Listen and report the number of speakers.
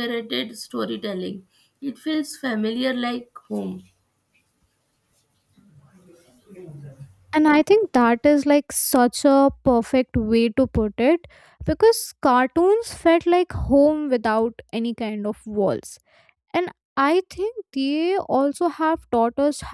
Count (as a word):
two